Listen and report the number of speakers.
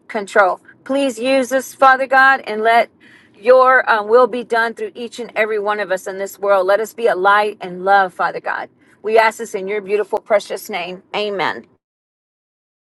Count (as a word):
one